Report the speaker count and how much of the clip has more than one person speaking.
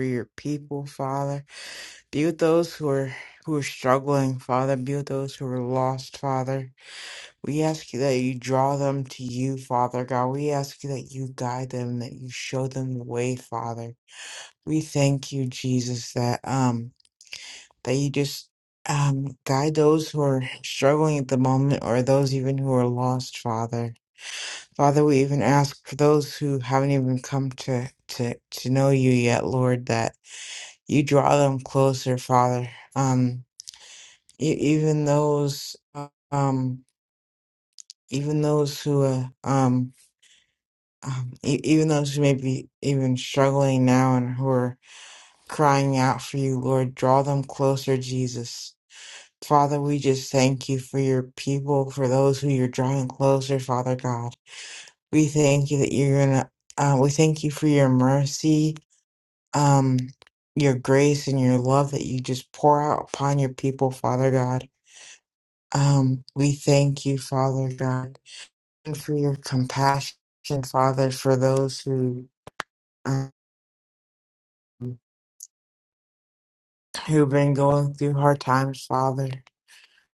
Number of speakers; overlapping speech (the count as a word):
one, no overlap